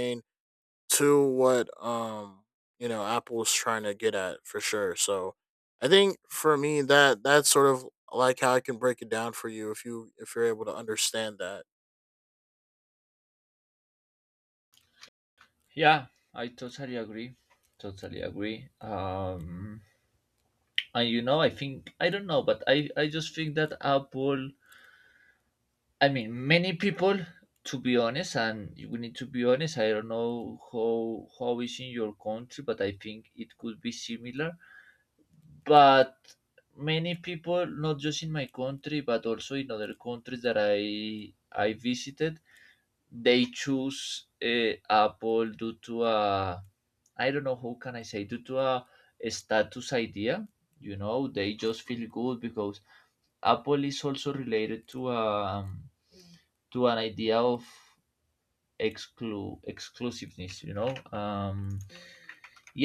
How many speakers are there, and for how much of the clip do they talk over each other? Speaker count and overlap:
2, no overlap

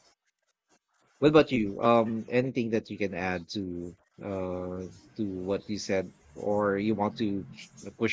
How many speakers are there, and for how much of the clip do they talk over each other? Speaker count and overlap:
1, no overlap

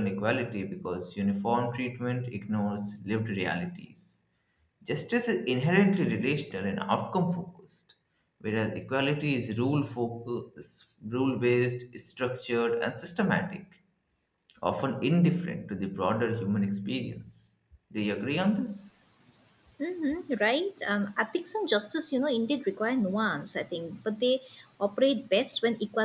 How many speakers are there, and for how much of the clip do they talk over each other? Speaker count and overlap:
2, no overlap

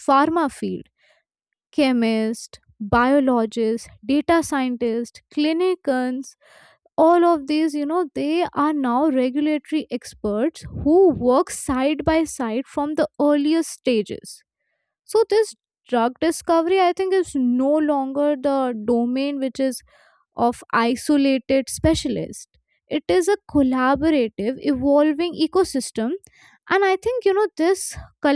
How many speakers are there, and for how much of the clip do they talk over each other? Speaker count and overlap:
1, no overlap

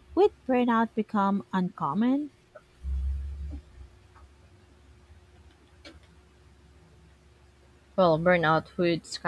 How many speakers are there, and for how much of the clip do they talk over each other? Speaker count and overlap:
2, no overlap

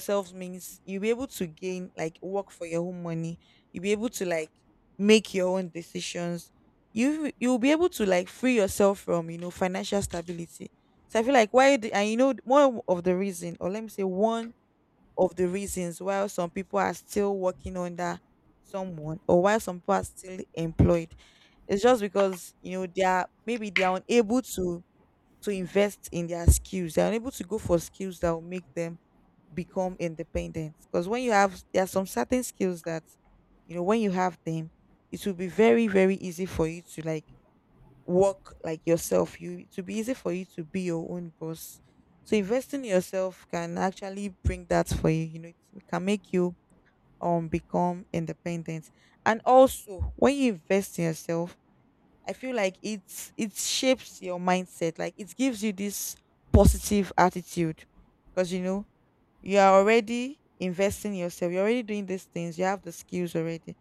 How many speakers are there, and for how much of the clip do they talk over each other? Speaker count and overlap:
1, no overlap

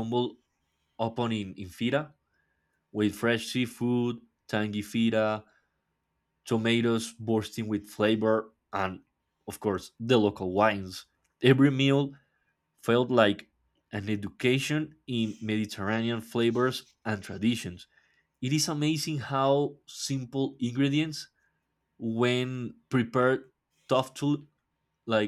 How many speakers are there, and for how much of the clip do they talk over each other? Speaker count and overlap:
1, no overlap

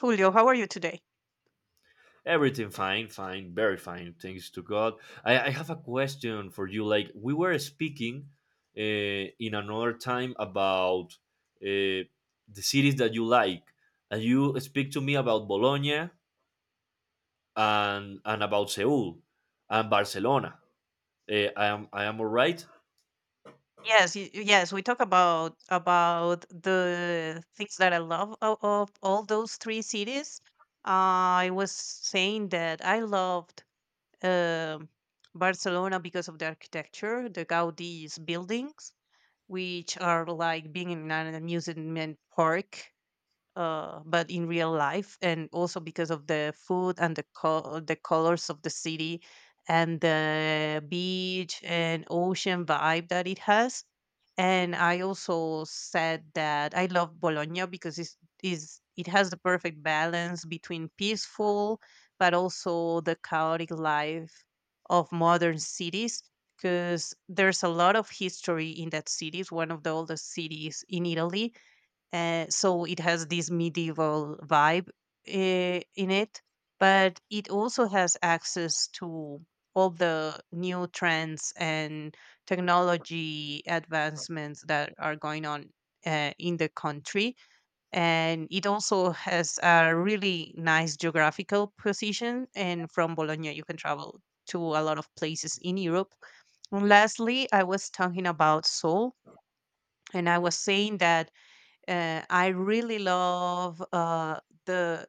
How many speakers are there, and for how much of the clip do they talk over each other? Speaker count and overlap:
2, no overlap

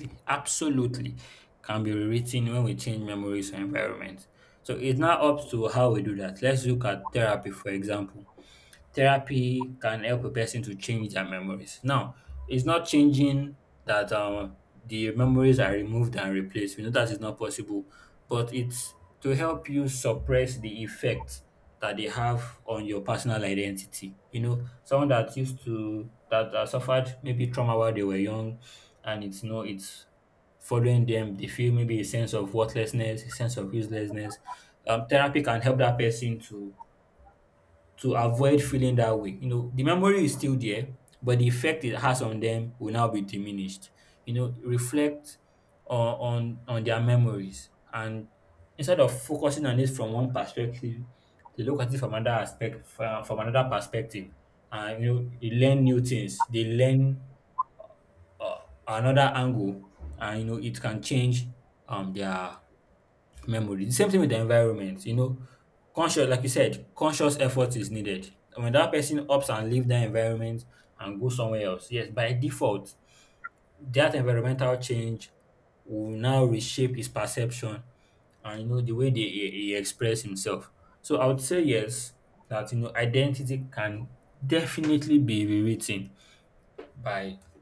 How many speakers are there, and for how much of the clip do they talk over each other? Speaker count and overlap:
1, no overlap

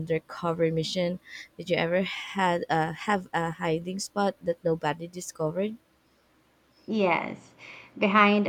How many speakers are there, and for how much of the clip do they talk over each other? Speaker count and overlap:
2, no overlap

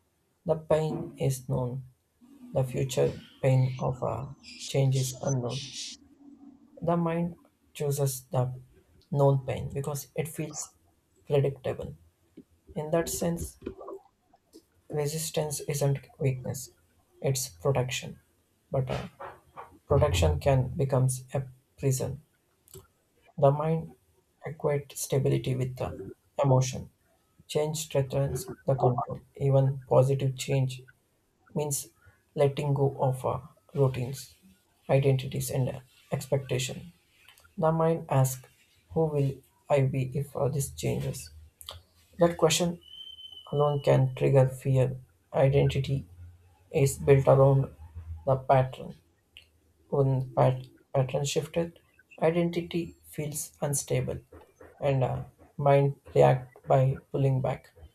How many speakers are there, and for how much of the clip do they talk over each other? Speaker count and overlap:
1, no overlap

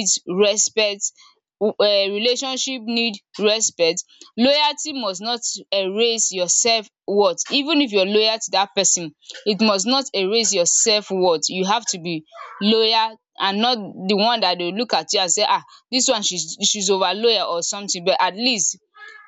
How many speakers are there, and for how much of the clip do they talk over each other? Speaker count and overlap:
1, no overlap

